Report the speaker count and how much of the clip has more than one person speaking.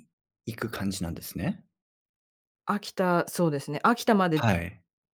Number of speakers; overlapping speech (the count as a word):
two, about 2%